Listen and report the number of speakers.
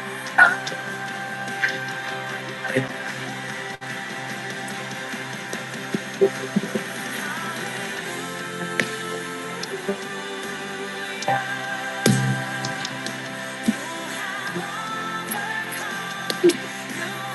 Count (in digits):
0